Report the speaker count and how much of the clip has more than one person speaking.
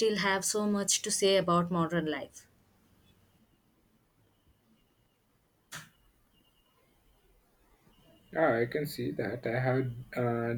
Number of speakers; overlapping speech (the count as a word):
two, no overlap